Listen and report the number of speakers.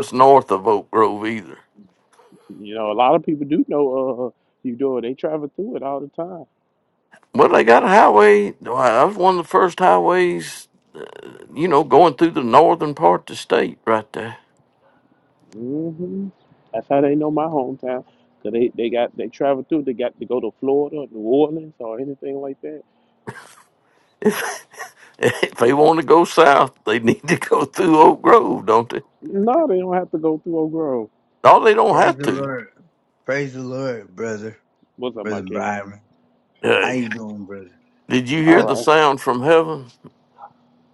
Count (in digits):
3